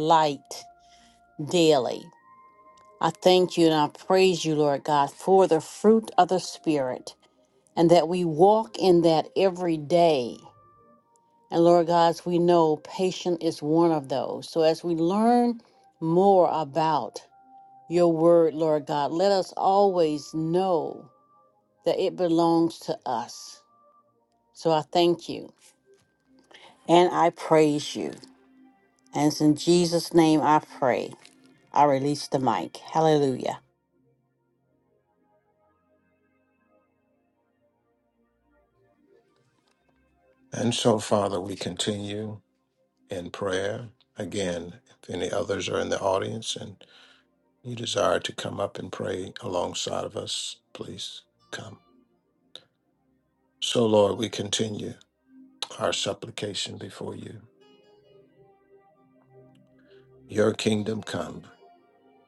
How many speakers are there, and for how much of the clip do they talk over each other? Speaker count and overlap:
two, no overlap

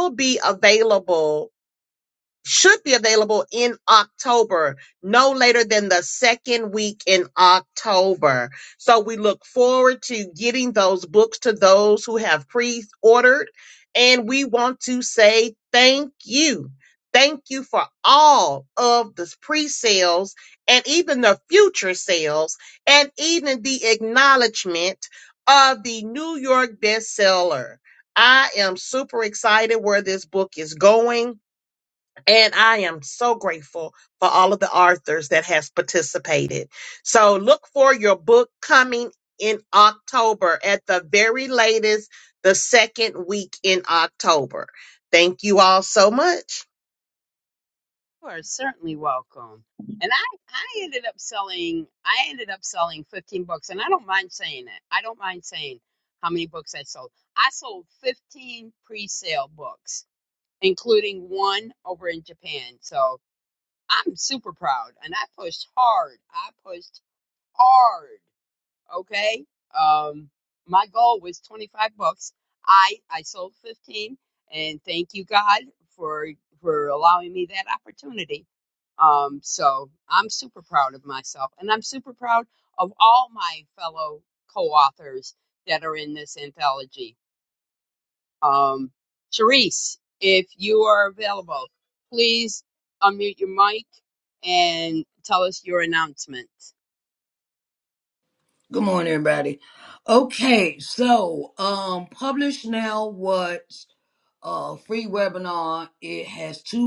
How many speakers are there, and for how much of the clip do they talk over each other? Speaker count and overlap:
three, no overlap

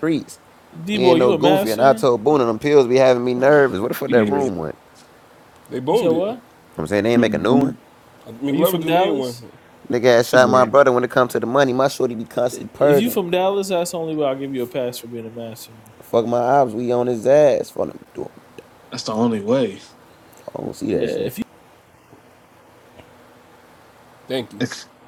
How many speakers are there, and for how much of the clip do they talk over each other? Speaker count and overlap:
four, about 18%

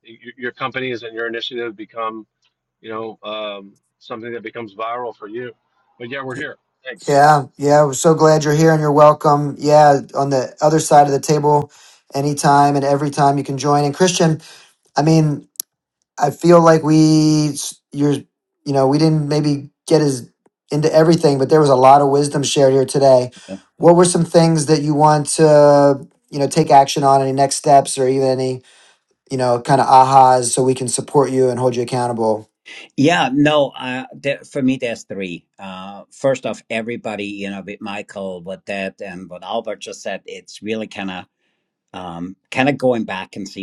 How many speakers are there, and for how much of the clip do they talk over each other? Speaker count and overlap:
three, under 1%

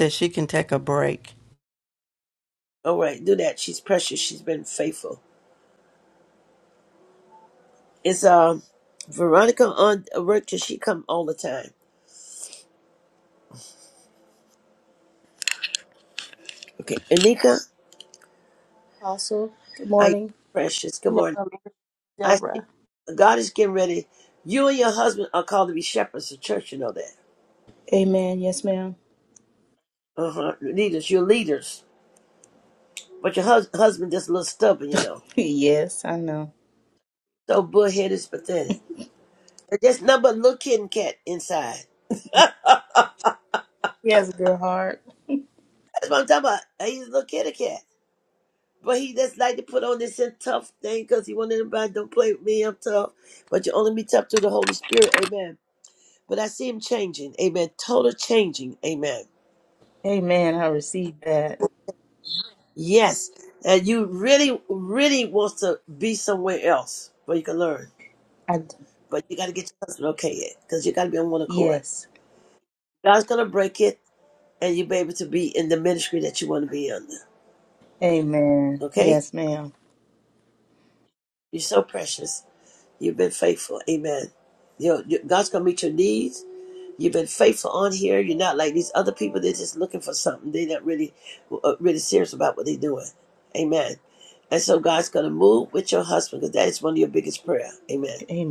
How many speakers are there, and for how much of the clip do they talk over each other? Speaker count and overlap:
three, about 1%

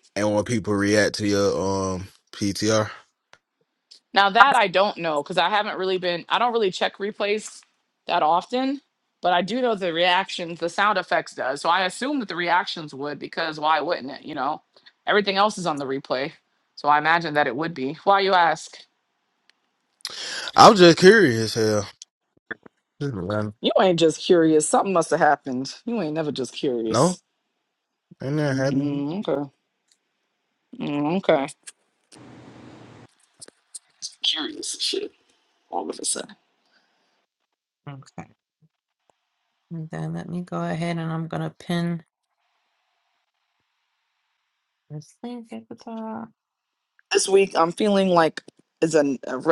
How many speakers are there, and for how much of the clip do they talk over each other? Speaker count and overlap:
three, about 1%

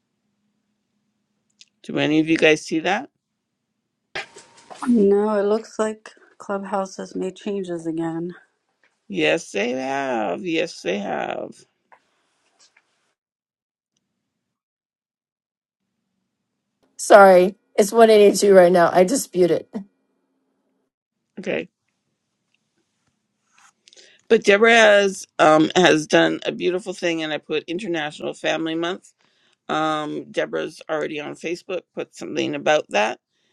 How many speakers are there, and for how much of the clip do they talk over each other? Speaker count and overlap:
three, no overlap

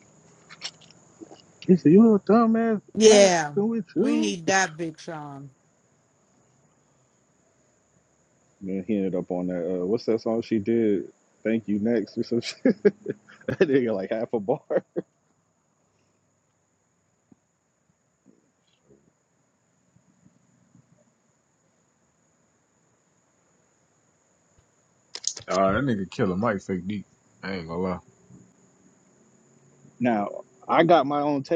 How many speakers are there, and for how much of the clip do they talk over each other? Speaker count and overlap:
three, about 3%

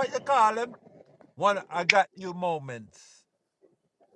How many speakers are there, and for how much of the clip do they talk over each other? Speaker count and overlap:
one, no overlap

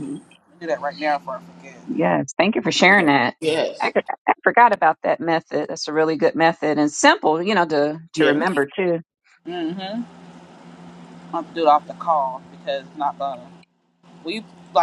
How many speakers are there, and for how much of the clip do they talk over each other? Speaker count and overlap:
three, about 4%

